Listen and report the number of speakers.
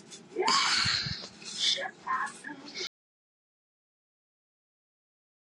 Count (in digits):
0